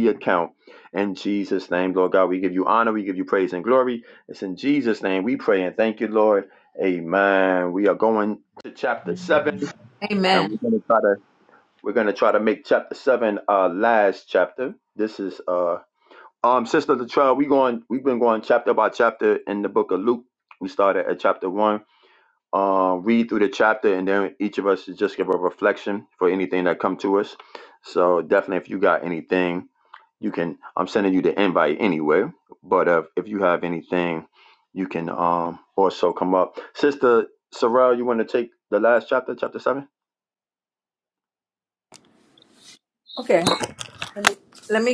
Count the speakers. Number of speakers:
2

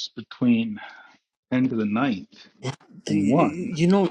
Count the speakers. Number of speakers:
2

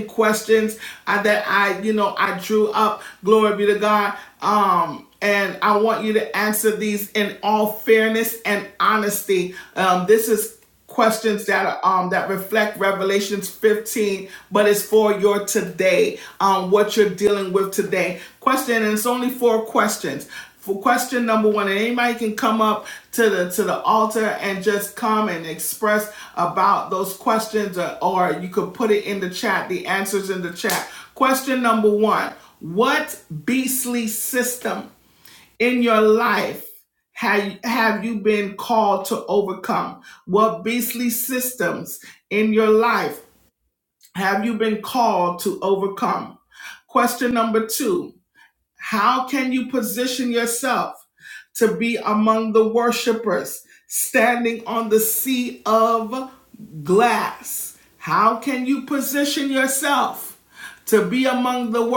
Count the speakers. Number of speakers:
1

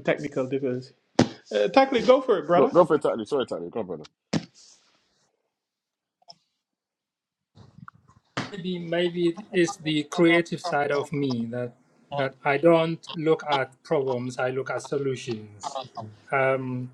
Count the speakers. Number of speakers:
3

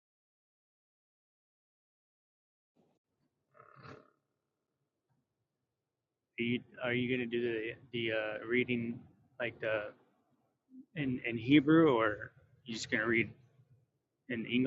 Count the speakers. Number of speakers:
1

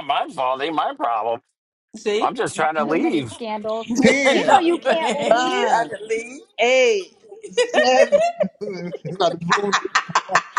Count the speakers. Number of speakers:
4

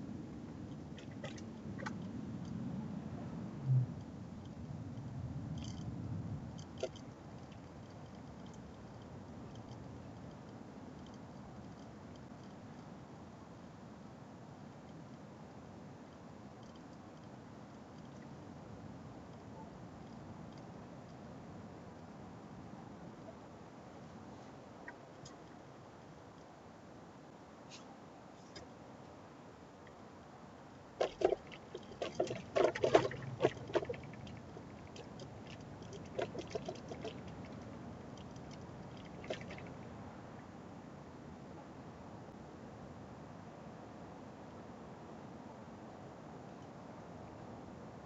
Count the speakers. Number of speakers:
0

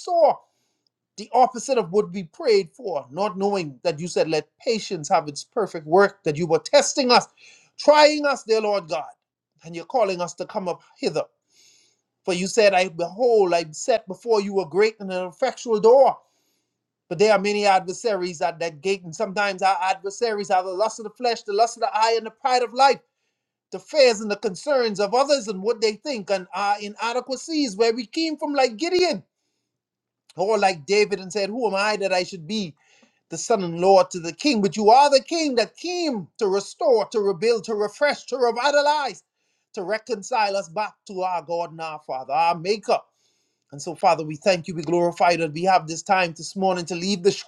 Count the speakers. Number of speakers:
1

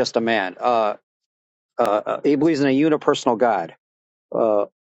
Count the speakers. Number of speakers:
1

